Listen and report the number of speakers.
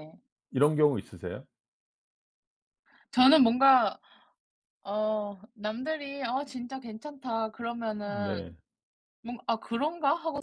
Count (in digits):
2